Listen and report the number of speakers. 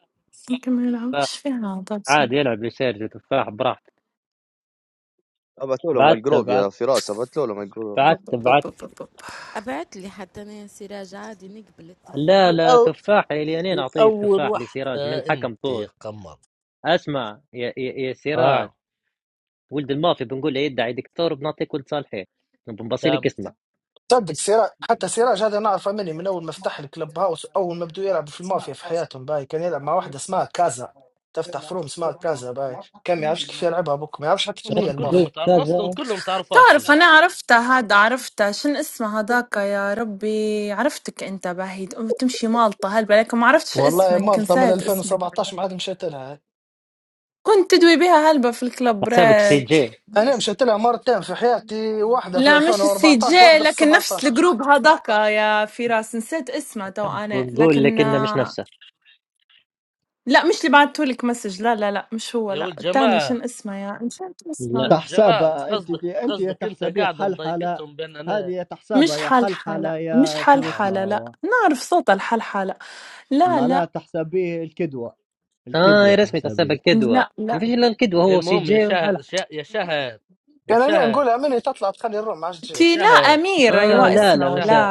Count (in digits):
7